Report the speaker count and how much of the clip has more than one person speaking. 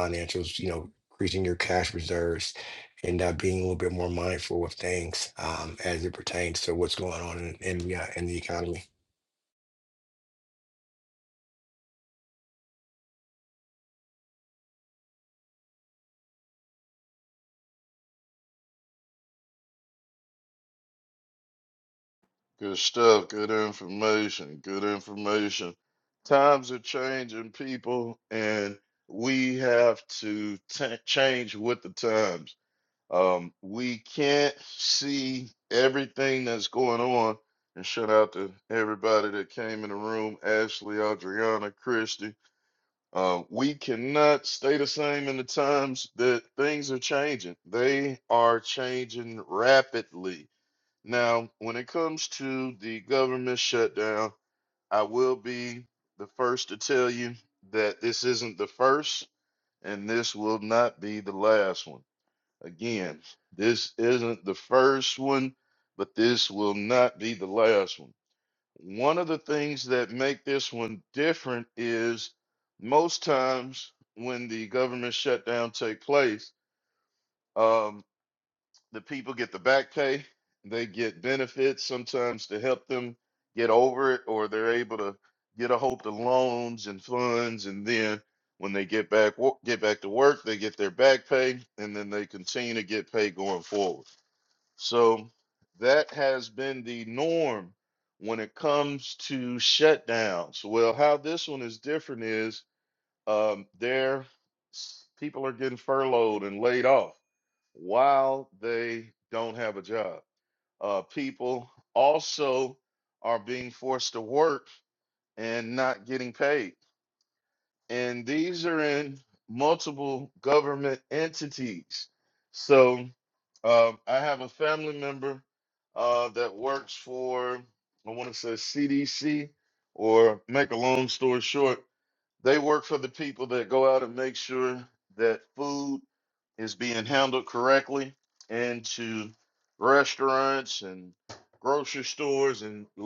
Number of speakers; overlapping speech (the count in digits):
2, no overlap